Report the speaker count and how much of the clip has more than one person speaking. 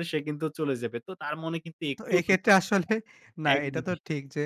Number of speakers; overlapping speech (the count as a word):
two, about 22%